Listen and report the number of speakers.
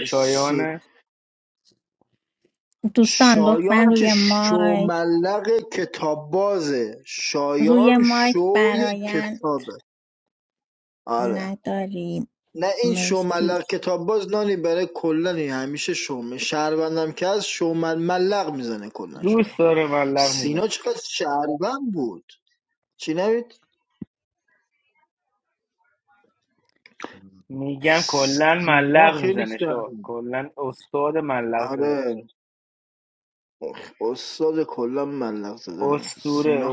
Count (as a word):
three